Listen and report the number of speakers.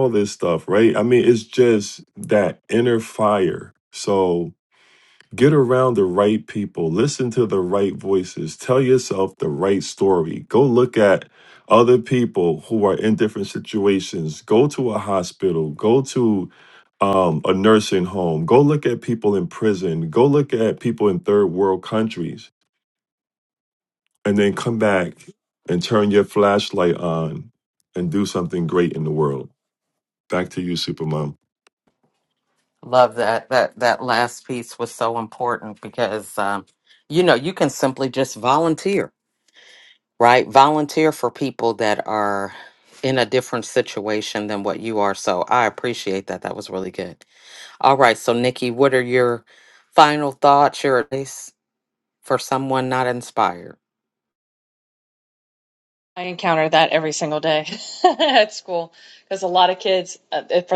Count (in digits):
3